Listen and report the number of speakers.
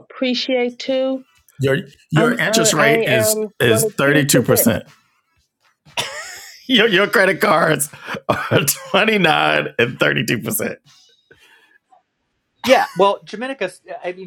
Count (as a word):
three